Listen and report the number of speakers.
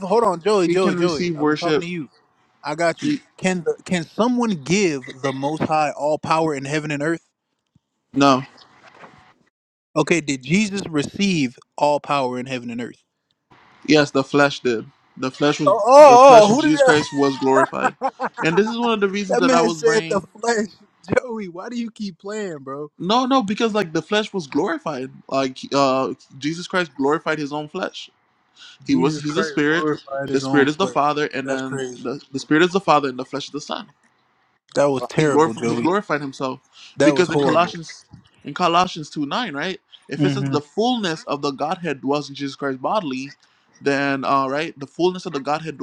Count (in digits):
2